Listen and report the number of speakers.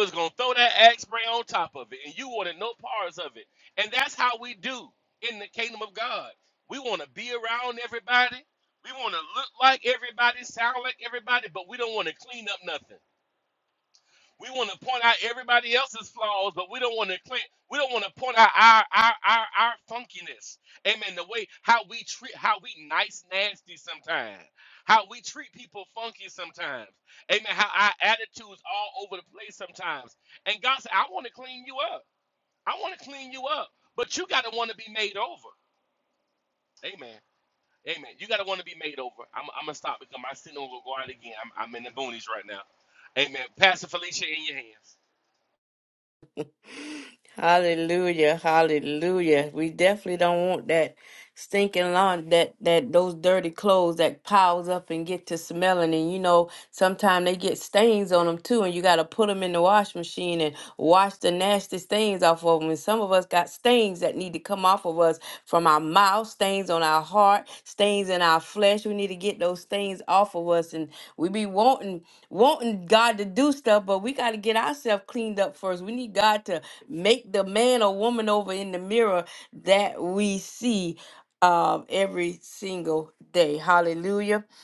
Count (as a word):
two